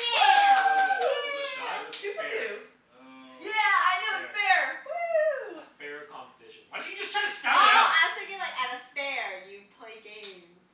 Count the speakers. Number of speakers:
4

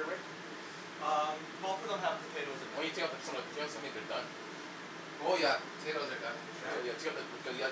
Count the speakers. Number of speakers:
3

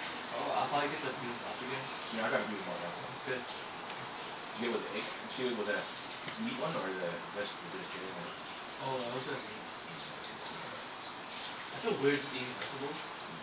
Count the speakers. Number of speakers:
2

